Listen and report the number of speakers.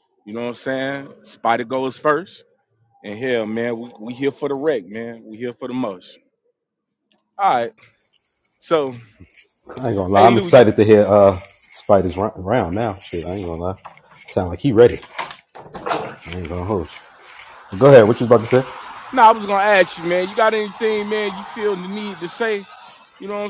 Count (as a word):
two